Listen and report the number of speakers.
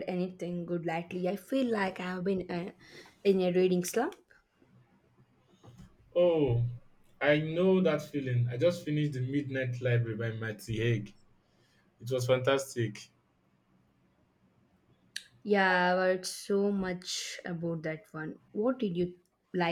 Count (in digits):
2